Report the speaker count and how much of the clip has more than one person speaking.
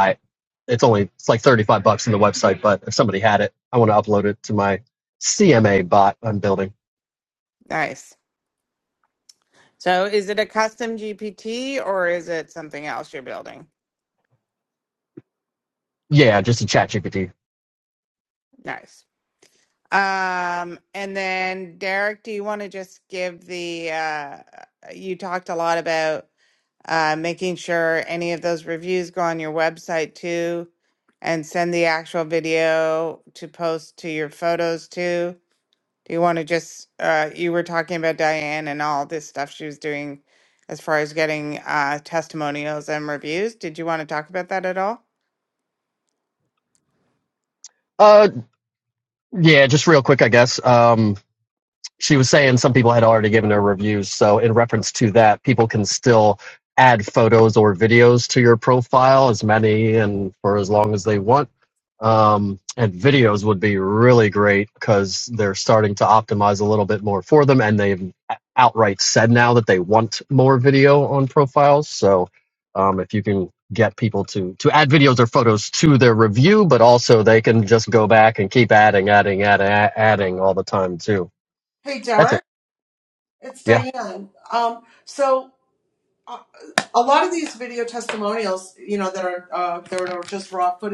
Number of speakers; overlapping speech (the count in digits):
3, under 1%